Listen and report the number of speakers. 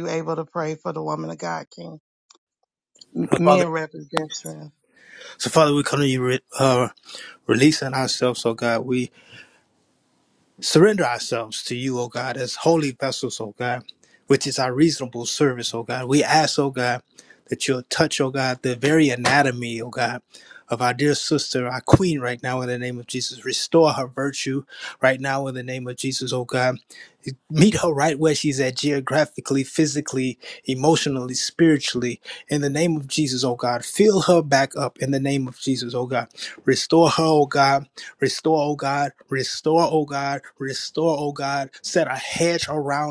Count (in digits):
2